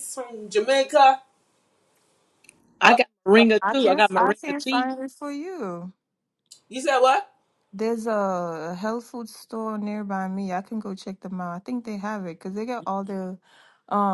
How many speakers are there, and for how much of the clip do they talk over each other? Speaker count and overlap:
3, about 10%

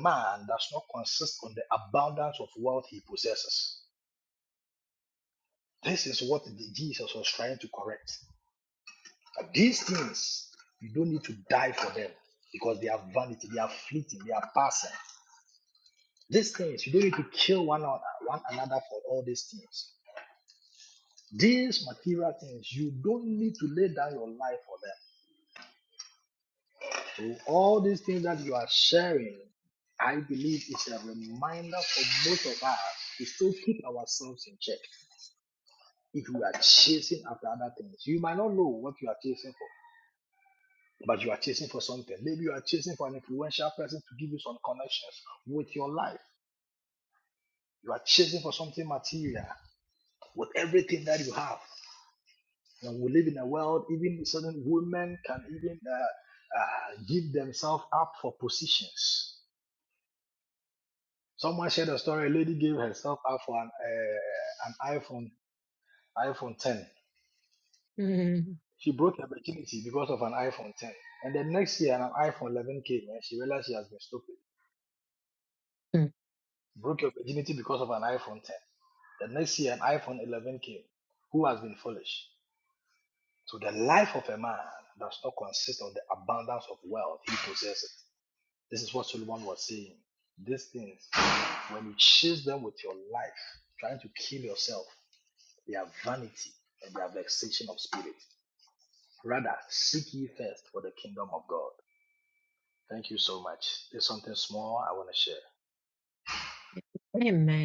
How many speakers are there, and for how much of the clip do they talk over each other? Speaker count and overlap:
2, no overlap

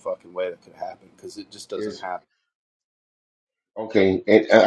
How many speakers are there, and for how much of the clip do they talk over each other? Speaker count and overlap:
2, about 5%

